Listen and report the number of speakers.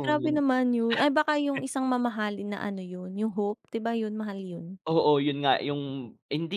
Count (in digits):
2